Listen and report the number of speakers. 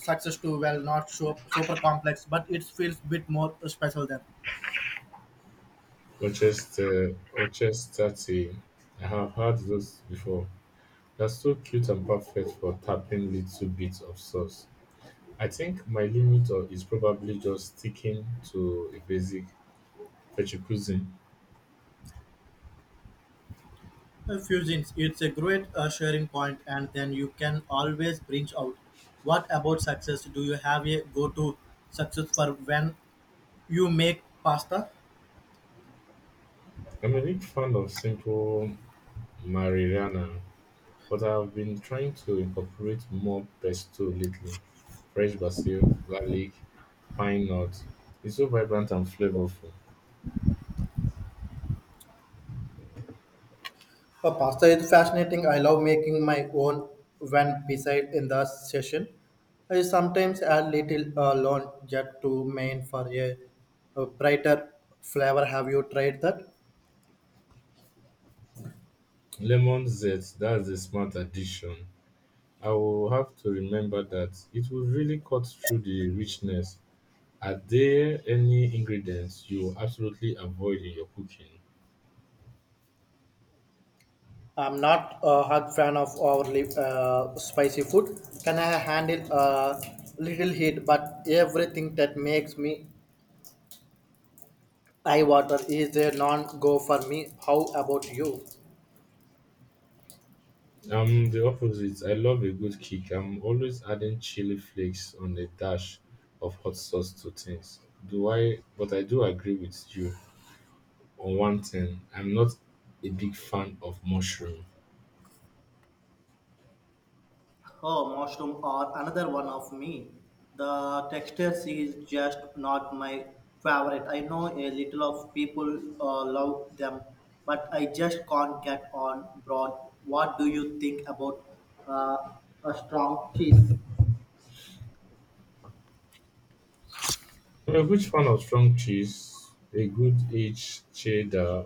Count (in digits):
2